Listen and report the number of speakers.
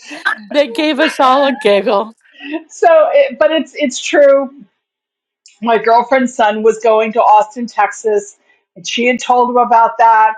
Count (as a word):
two